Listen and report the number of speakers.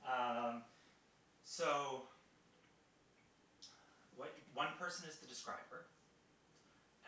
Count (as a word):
one